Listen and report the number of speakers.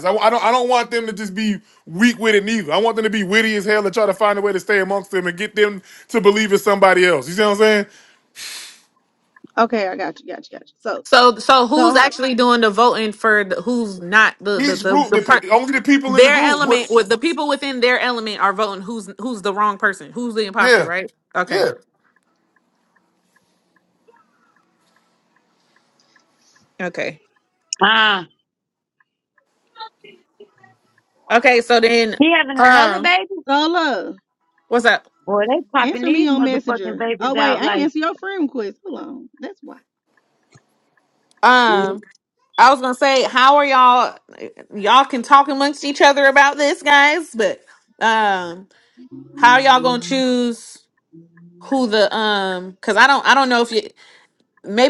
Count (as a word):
four